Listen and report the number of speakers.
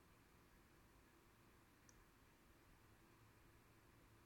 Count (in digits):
0